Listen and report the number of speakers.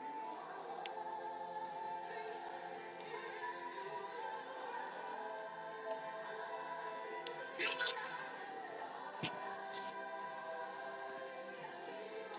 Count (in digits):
0